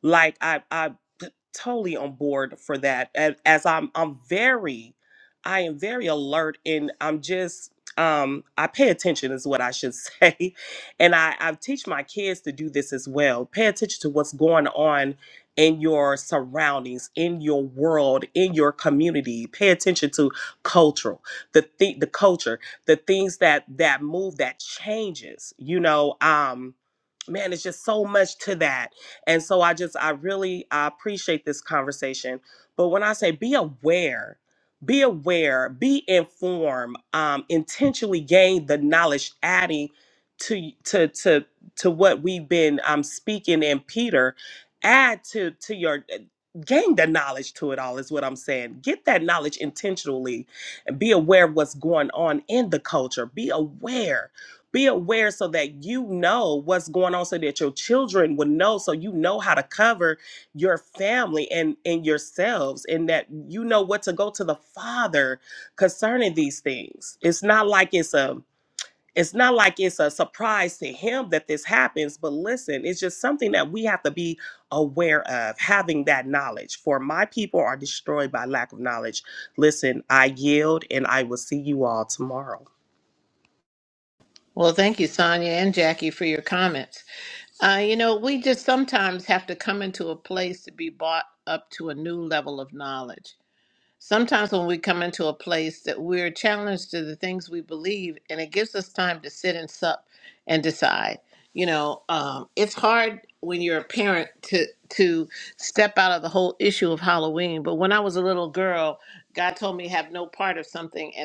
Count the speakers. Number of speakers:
two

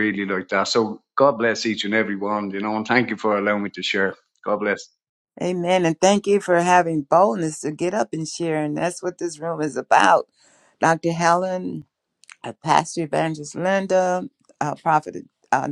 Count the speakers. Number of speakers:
two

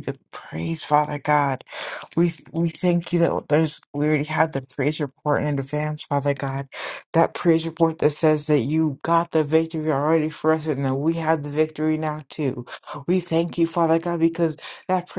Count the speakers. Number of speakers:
one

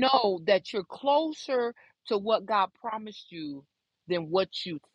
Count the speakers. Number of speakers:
one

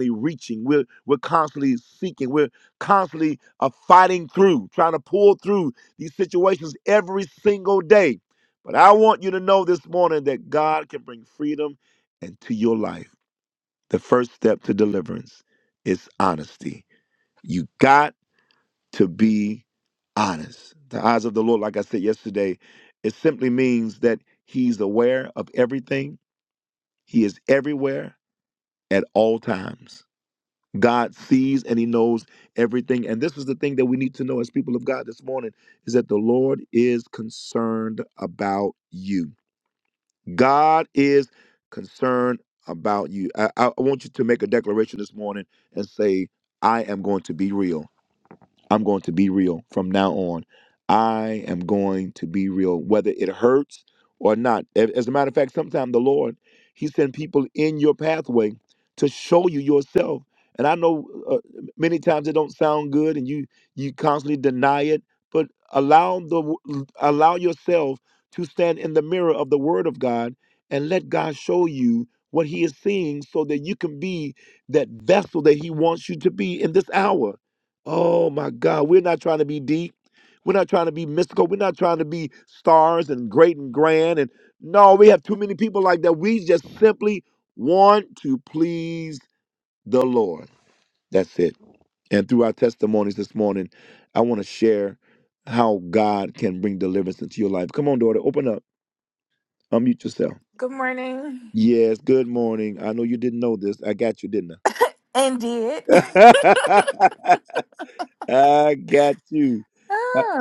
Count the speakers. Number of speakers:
two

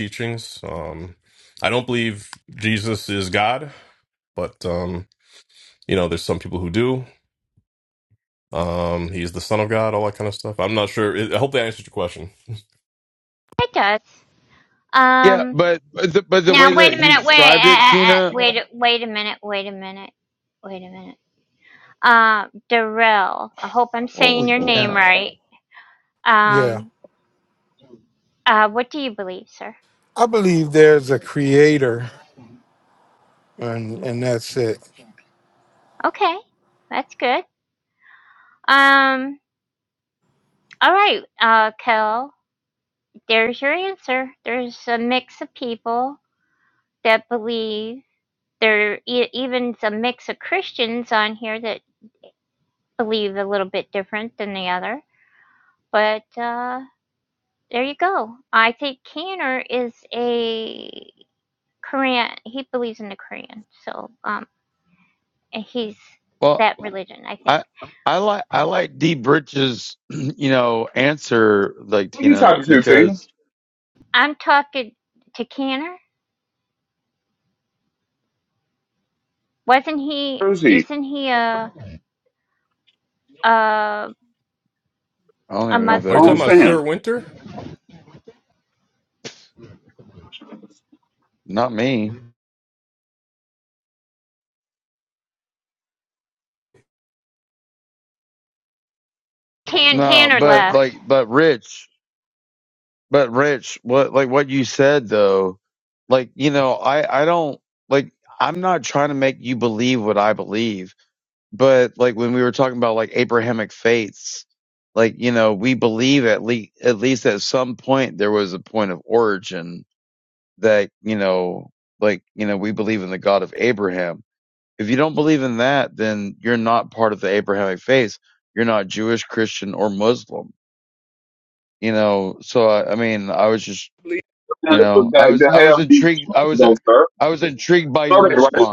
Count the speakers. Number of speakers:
five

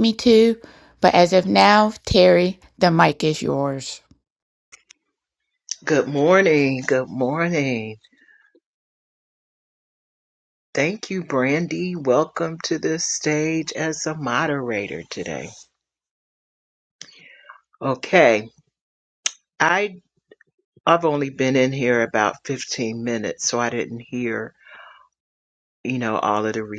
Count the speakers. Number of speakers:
two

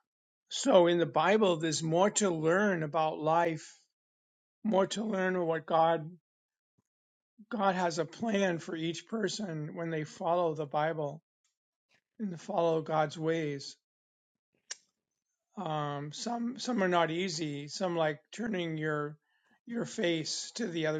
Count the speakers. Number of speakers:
one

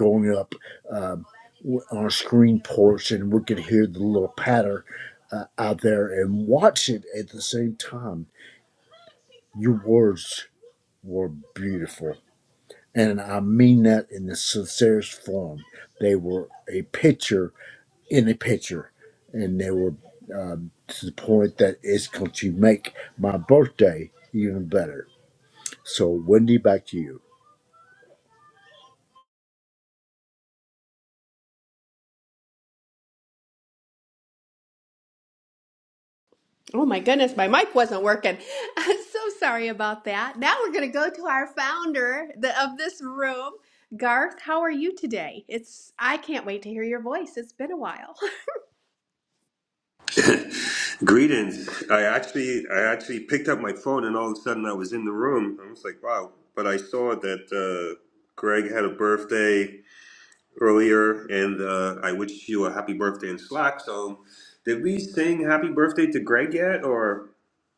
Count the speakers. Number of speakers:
three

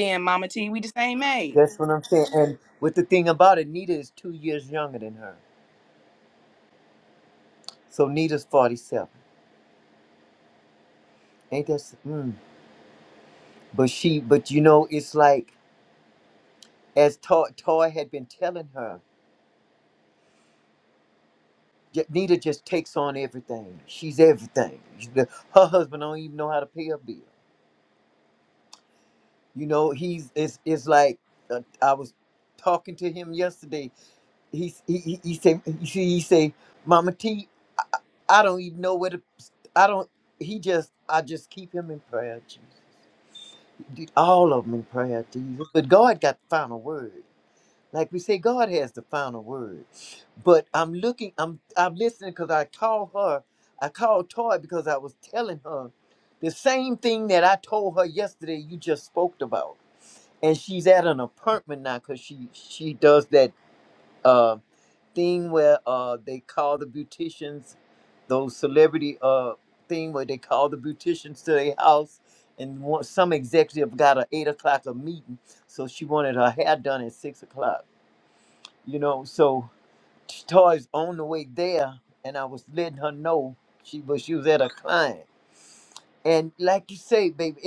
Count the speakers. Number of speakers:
two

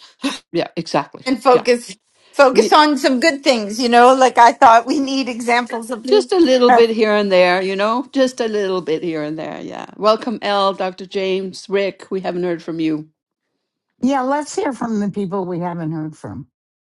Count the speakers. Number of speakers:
three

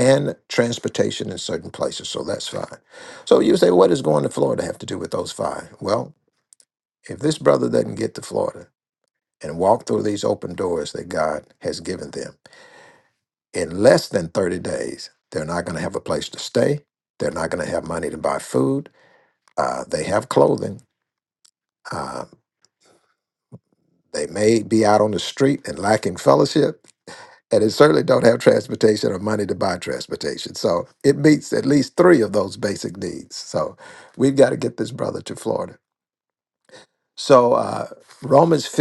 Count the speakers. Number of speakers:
one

